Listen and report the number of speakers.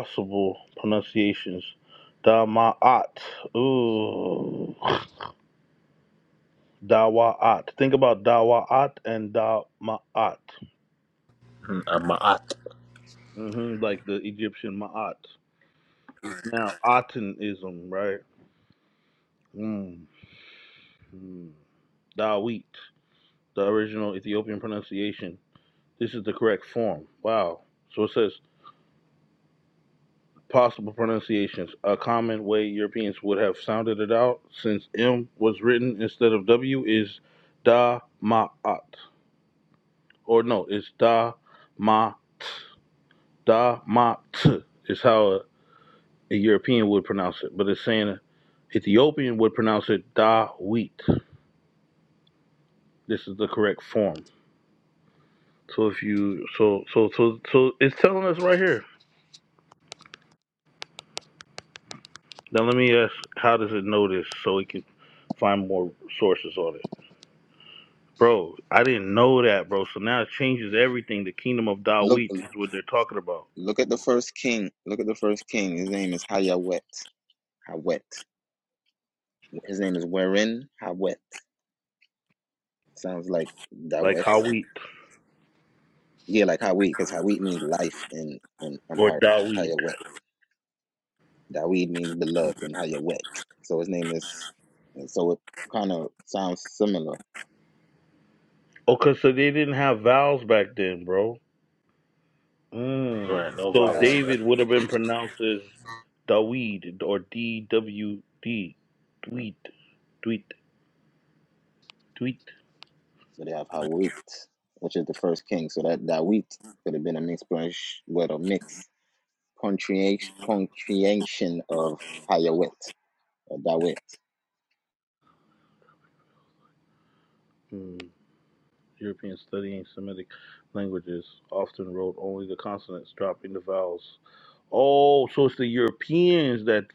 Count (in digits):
3